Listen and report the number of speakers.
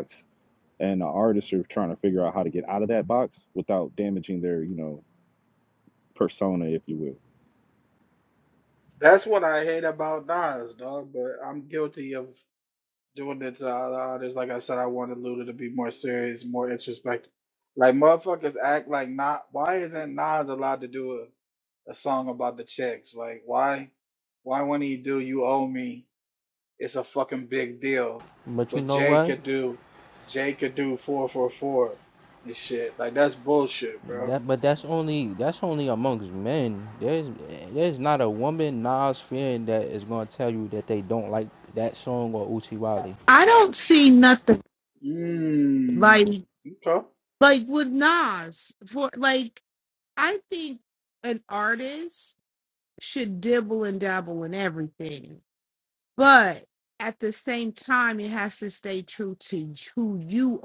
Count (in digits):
4